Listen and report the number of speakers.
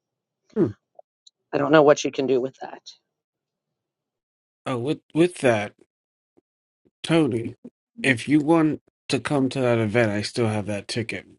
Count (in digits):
2